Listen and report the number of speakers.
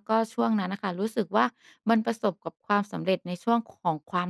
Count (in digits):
1